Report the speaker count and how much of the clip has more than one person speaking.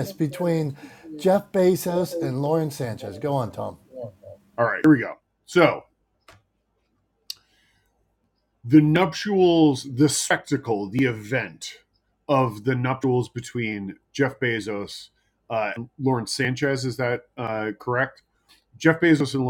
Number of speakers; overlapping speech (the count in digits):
2, no overlap